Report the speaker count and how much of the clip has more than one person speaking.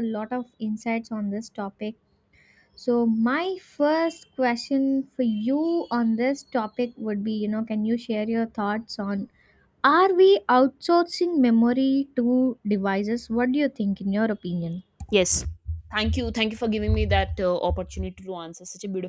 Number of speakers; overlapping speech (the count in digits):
2, no overlap